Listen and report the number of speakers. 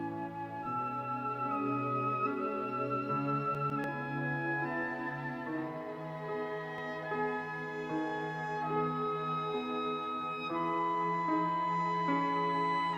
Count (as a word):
zero